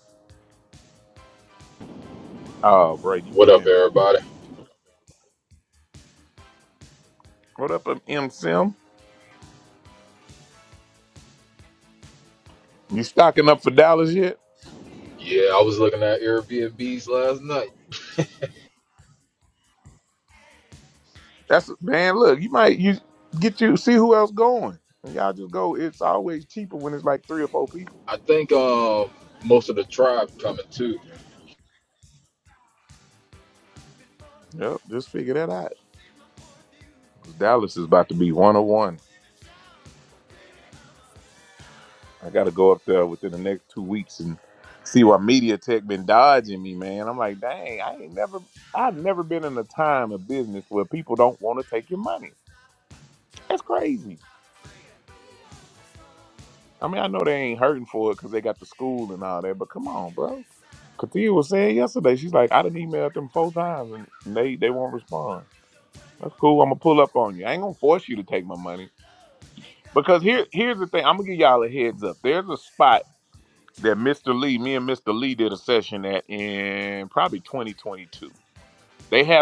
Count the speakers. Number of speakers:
2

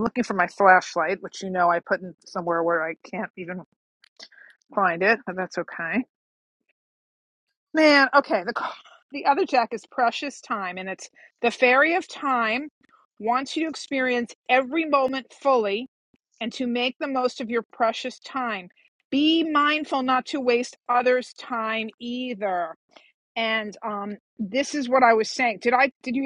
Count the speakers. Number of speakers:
1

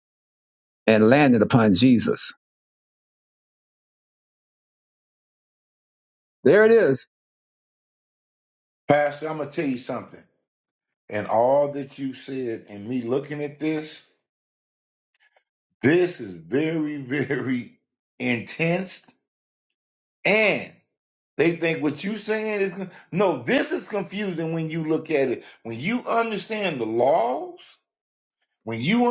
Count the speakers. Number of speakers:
2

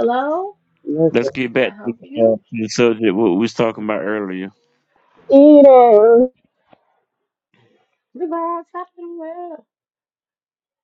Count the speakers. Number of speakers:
3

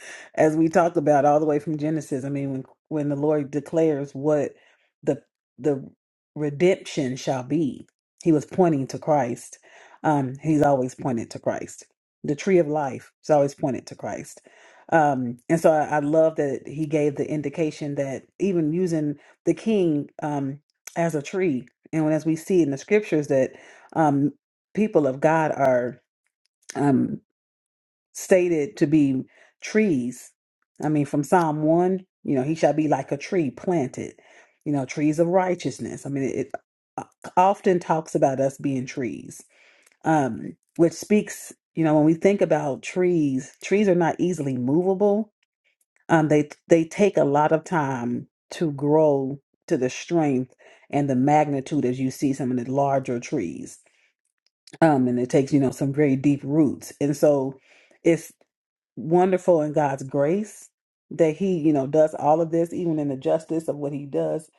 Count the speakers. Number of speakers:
1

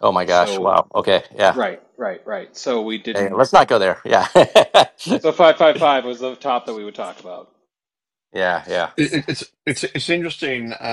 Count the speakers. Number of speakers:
3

